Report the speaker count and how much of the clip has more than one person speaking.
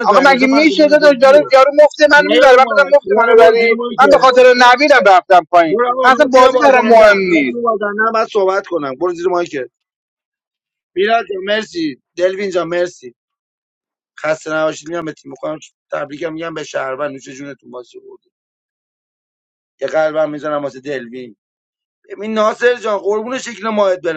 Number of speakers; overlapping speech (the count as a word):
two, about 22%